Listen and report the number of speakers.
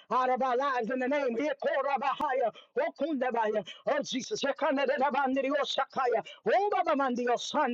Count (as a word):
one